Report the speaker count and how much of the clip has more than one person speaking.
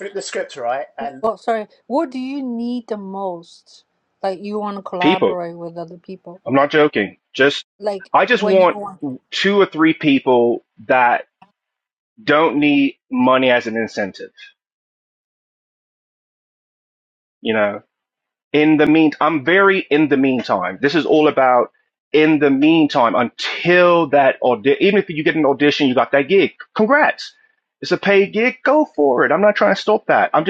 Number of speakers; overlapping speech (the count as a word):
three, about 3%